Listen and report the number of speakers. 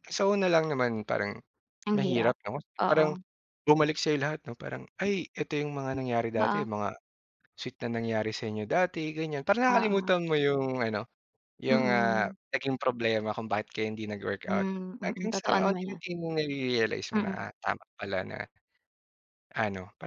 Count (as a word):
two